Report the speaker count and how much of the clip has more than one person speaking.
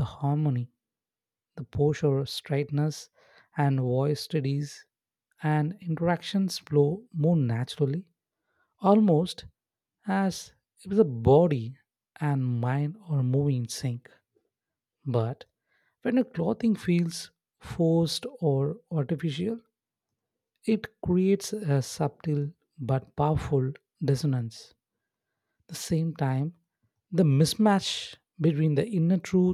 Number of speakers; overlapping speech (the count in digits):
1, no overlap